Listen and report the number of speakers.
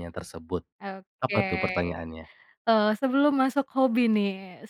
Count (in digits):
2